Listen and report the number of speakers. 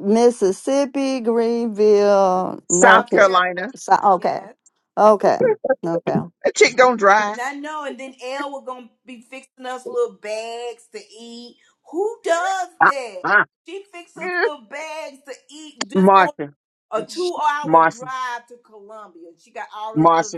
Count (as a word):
three